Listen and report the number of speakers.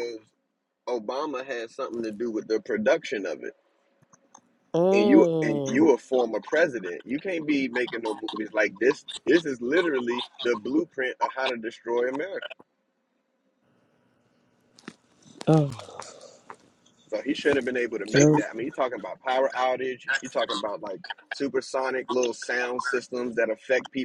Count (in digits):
2